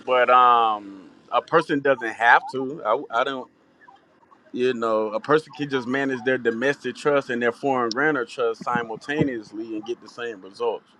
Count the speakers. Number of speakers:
1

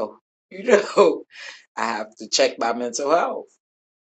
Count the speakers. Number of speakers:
1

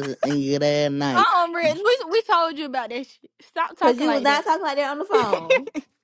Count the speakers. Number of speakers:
3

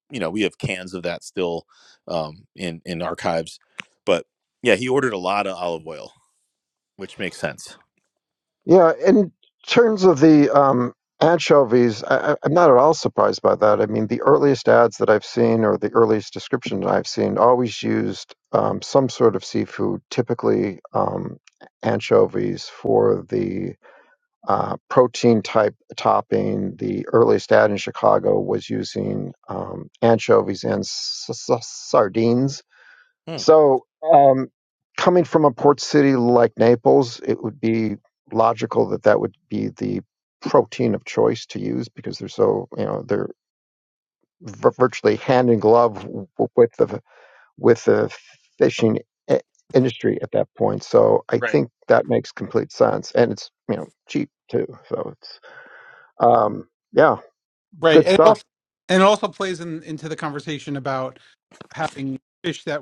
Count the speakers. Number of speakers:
3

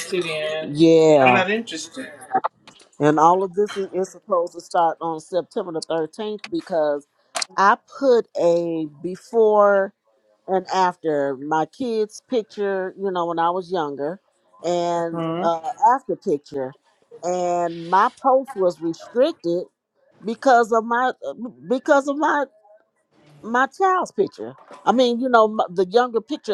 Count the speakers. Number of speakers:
2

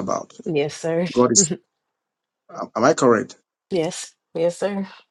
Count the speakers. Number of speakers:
2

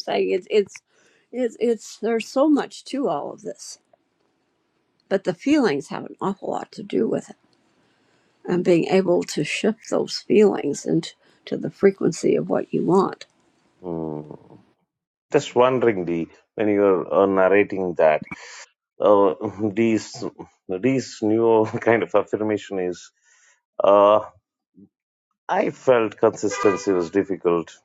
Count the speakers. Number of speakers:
2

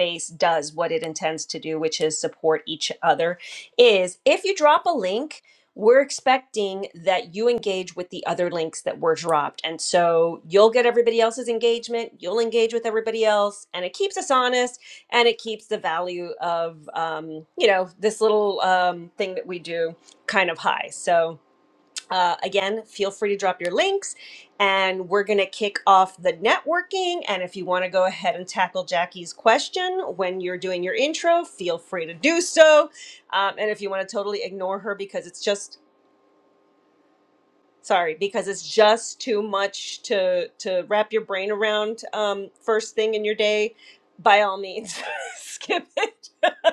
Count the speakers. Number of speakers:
1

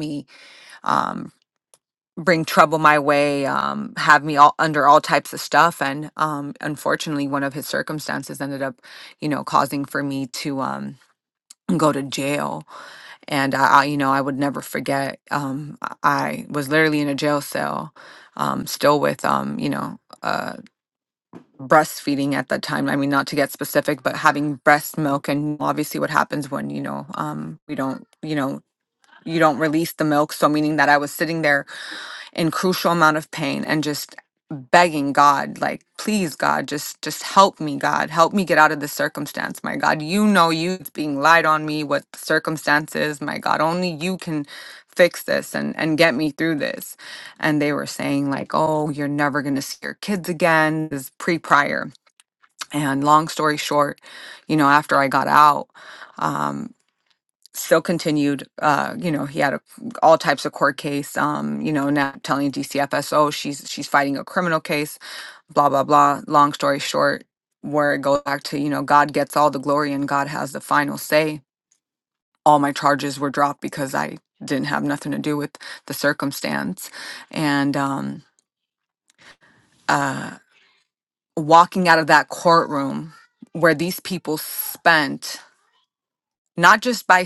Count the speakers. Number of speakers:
1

